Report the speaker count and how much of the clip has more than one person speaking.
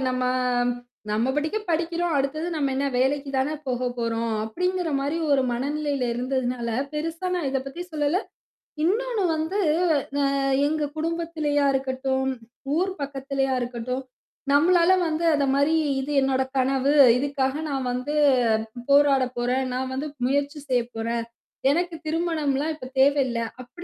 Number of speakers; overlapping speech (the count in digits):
1, no overlap